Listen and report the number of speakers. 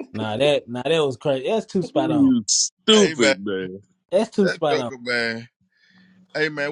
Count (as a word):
three